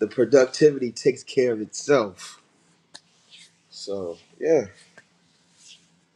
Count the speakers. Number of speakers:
one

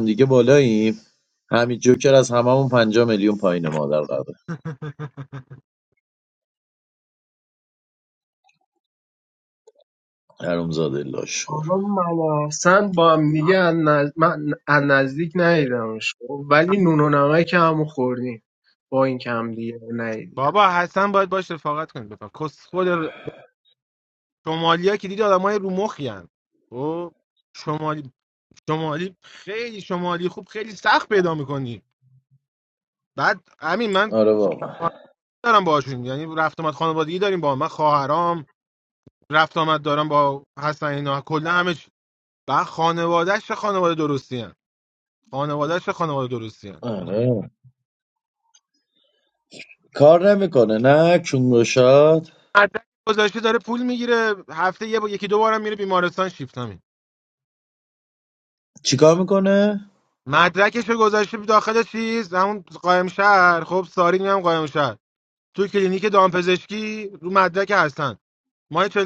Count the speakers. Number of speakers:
three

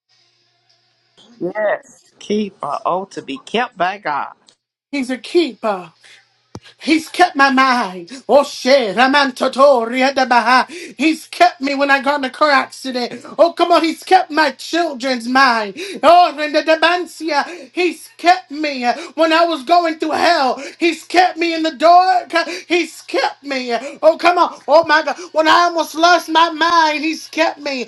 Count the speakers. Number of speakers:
two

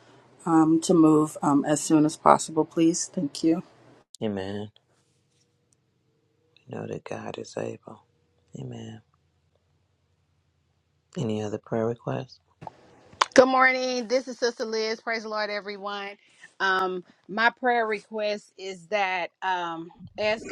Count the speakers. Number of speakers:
three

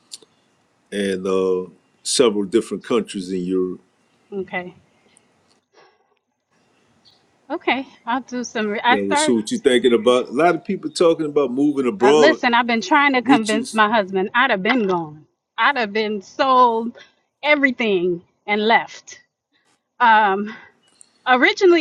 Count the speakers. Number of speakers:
two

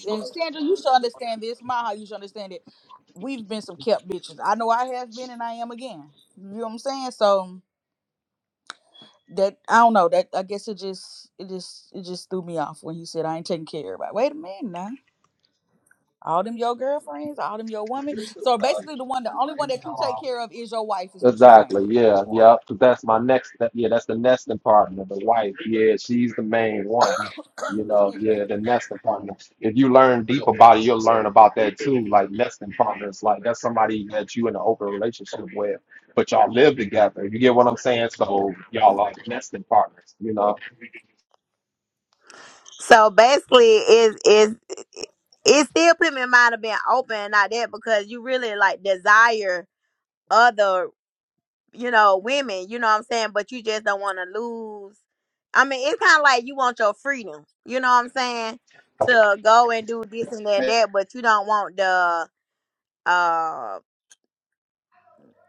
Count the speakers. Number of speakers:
three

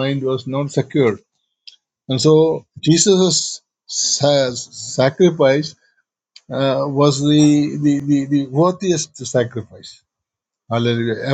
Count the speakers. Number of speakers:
one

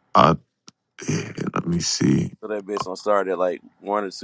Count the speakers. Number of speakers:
two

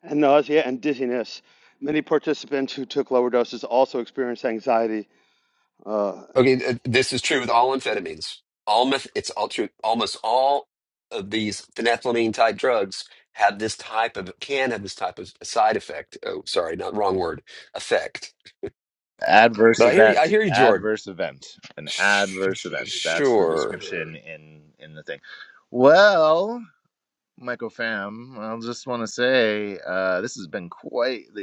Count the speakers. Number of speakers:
three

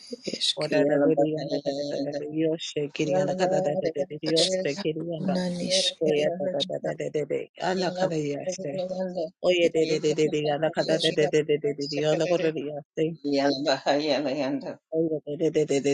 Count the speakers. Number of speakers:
three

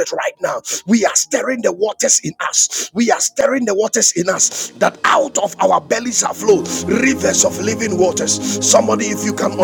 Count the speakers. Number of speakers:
one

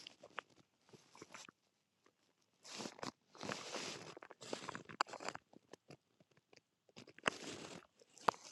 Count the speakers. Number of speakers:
zero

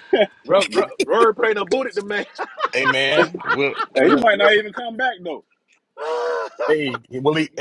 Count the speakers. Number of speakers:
three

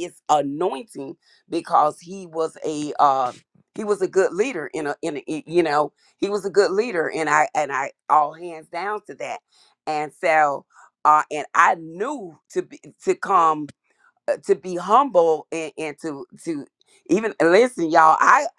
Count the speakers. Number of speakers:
one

